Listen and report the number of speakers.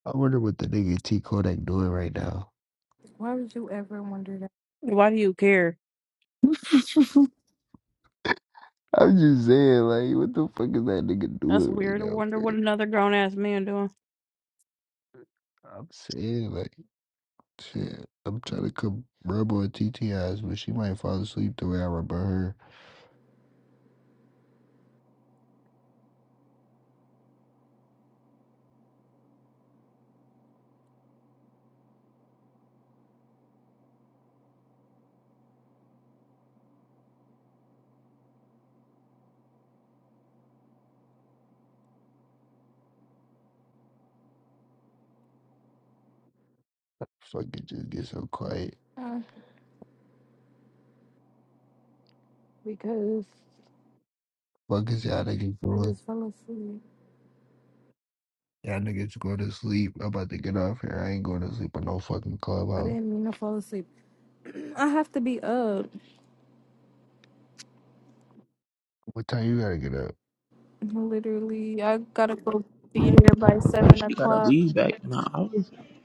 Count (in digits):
4